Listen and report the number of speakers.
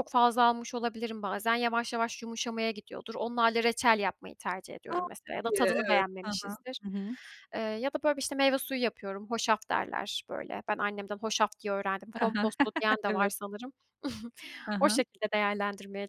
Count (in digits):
2